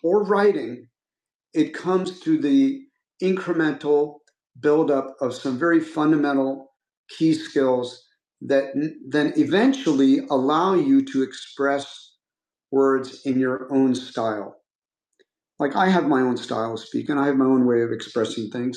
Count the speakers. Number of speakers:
one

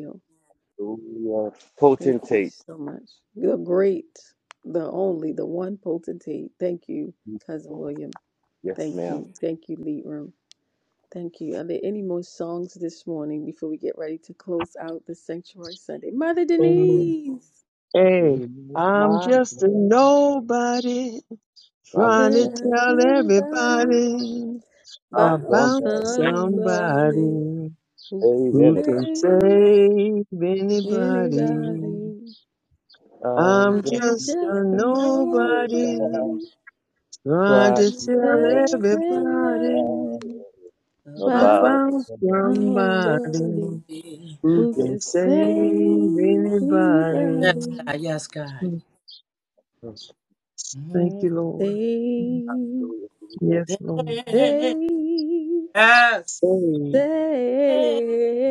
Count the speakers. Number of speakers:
four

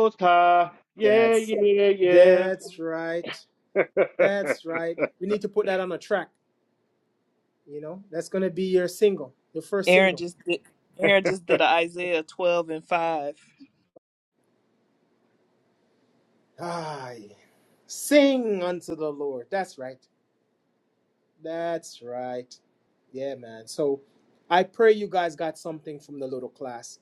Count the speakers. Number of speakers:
three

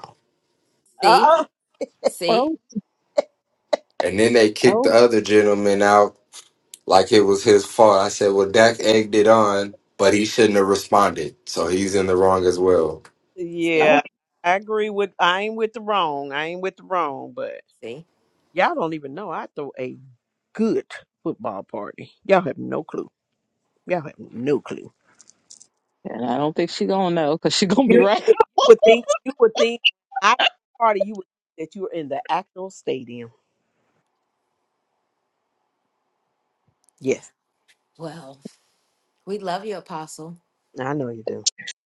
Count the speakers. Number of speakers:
four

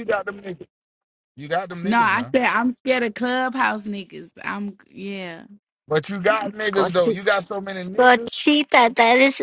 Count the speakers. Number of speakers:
three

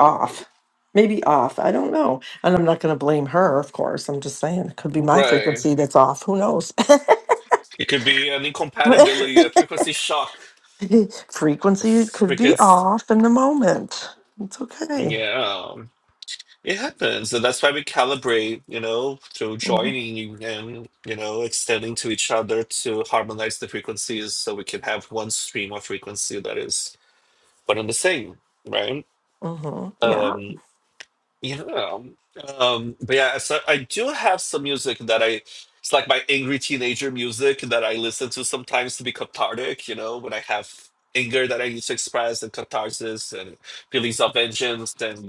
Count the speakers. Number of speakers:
two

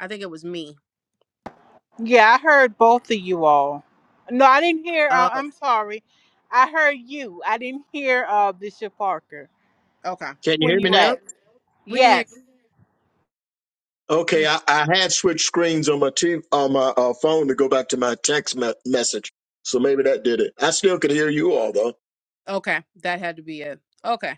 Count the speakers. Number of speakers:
three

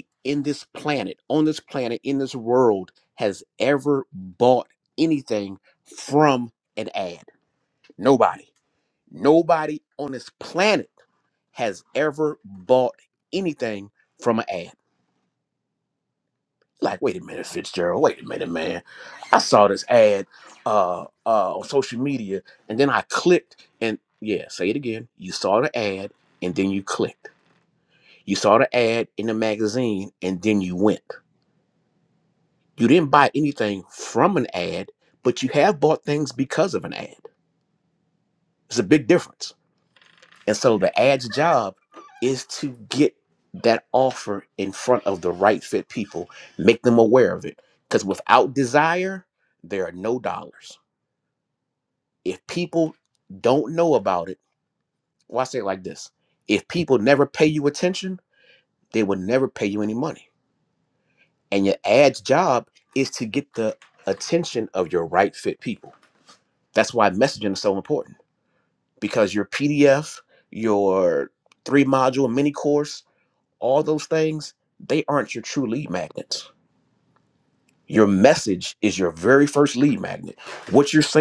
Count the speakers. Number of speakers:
one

